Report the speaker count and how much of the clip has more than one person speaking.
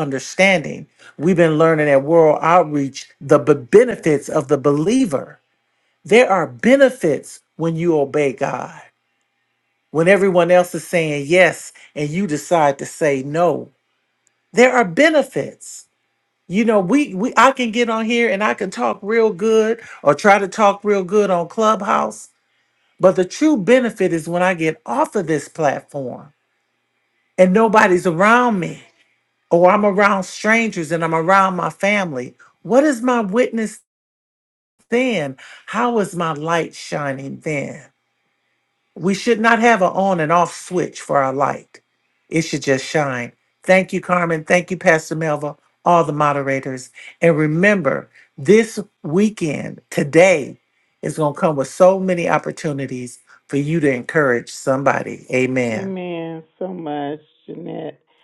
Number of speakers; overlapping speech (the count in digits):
2, under 1%